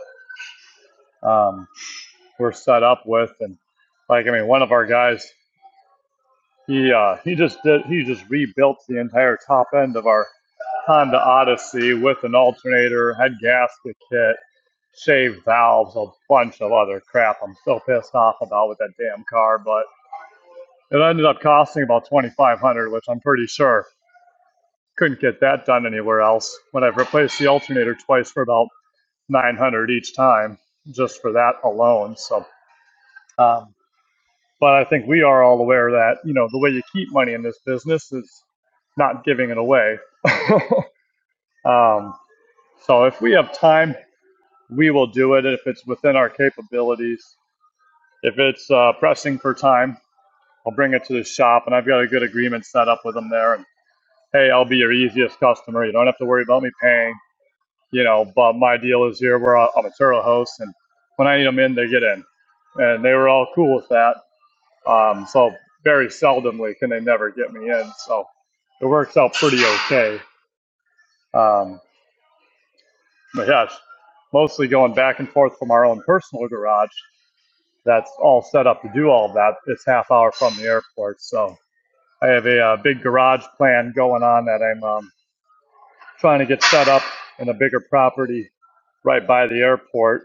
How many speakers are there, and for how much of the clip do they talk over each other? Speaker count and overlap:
one, no overlap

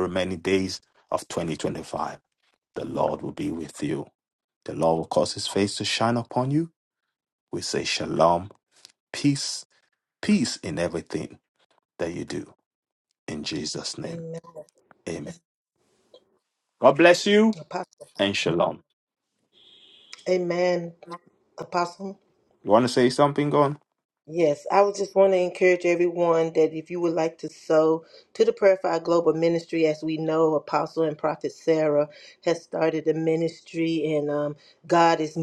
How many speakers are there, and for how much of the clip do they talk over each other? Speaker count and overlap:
two, no overlap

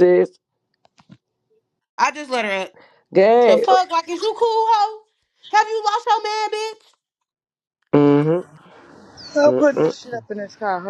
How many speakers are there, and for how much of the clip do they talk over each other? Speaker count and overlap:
three, about 6%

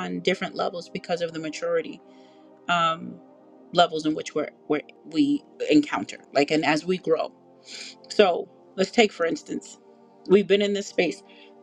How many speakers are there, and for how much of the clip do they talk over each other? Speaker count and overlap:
one, no overlap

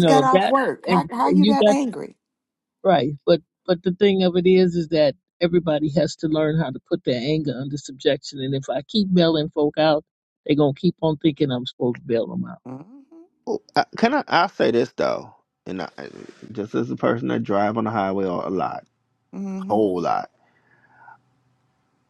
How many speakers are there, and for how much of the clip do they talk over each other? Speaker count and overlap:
three, about 8%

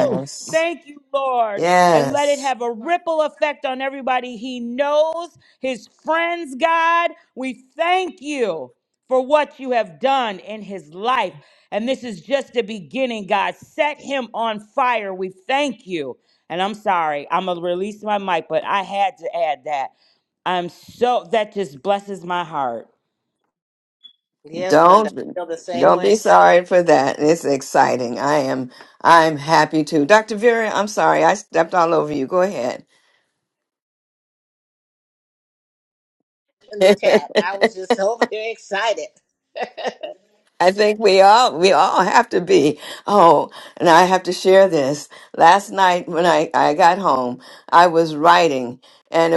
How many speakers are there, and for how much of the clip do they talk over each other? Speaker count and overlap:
three, about 4%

